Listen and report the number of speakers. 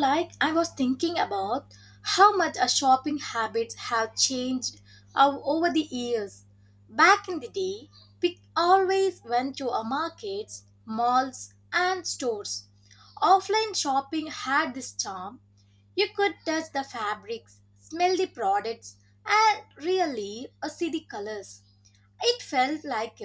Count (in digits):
1